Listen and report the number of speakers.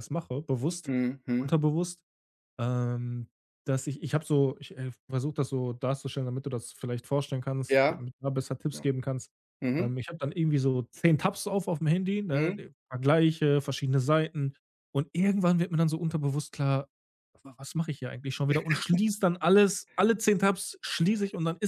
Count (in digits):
2